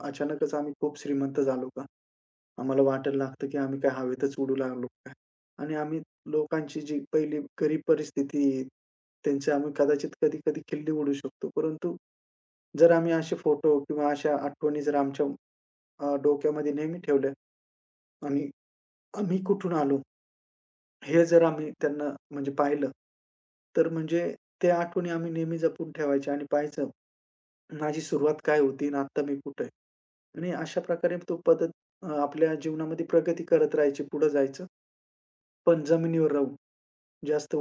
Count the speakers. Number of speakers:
one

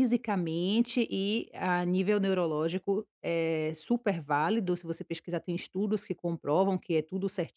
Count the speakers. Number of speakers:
one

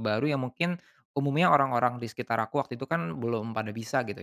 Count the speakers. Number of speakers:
one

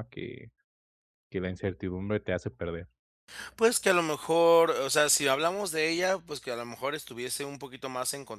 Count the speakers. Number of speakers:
two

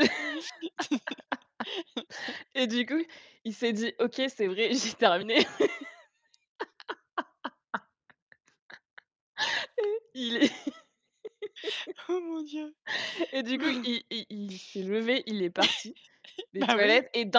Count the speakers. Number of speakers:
two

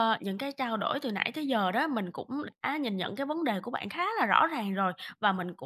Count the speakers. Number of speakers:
one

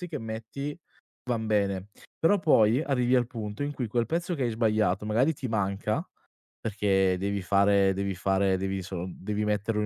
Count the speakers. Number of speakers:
one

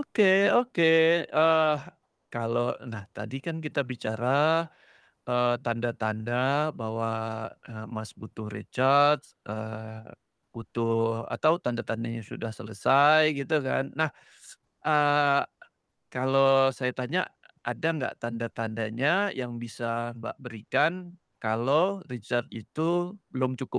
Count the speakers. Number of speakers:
one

